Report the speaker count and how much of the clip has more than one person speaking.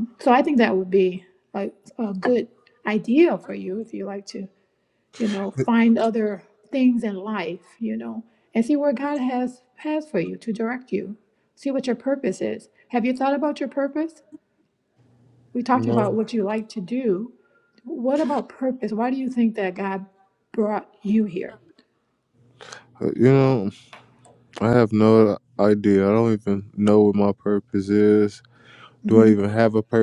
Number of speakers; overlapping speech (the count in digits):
2, about 2%